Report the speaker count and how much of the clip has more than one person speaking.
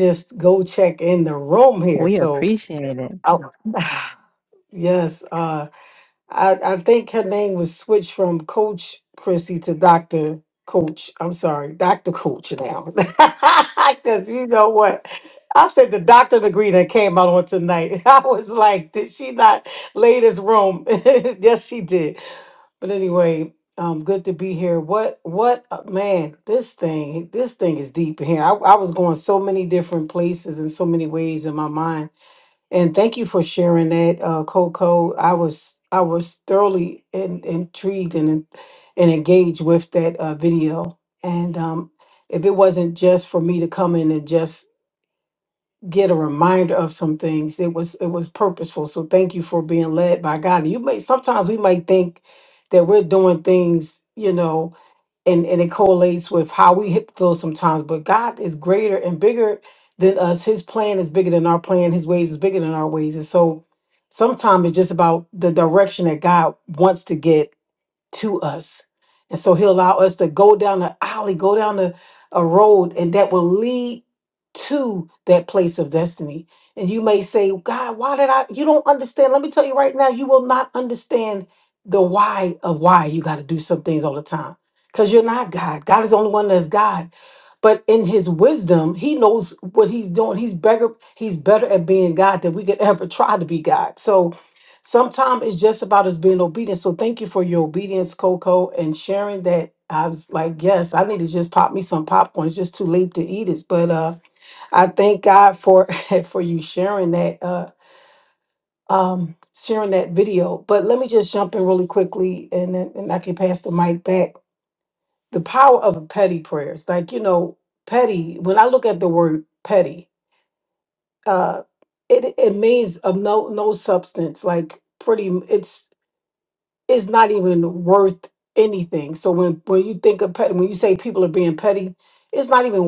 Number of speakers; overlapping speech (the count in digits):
2, under 1%